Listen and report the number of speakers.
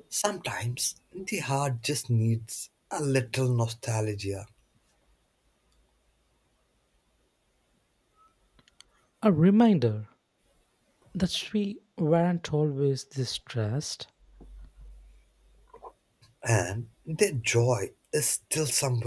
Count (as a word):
two